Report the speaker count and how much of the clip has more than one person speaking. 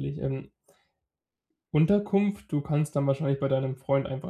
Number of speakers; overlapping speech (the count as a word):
one, no overlap